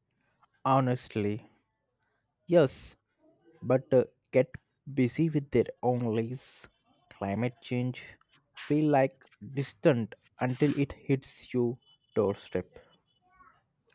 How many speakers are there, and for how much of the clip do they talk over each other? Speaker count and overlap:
one, no overlap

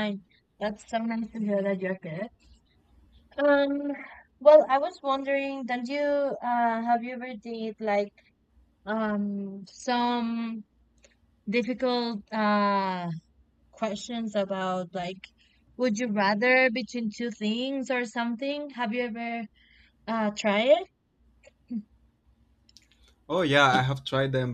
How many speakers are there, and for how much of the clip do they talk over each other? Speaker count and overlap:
two, no overlap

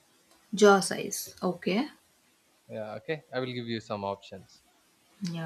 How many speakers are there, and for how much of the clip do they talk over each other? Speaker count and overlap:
two, no overlap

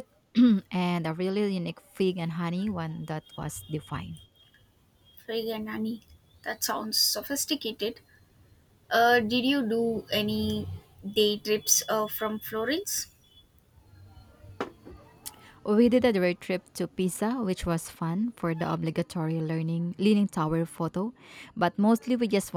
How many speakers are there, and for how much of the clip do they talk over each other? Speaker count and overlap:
two, no overlap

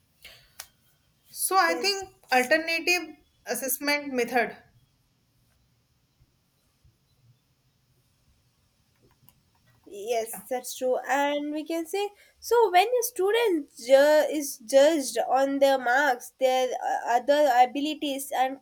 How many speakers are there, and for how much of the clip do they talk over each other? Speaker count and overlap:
two, about 1%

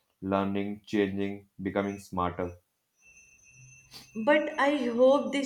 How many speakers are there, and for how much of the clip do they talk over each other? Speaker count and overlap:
two, no overlap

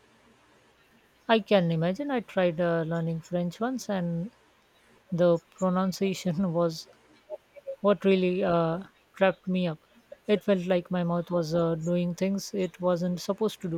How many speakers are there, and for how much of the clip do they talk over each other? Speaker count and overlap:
one, no overlap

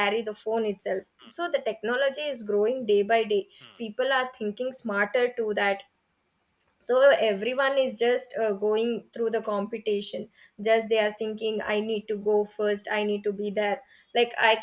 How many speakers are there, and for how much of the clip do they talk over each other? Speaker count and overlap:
one, no overlap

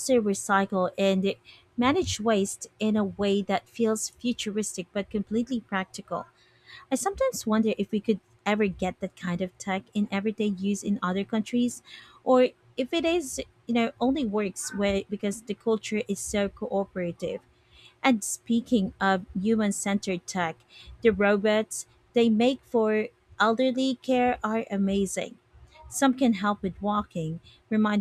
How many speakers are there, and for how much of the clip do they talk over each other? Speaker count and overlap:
one, no overlap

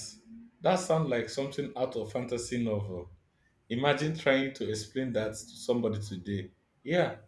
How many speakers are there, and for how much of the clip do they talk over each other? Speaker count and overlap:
one, no overlap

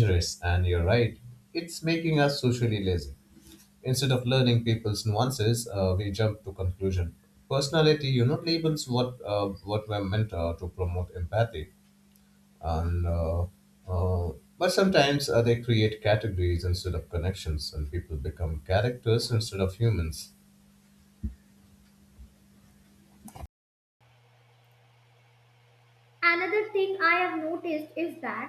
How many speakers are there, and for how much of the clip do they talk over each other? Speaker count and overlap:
two, no overlap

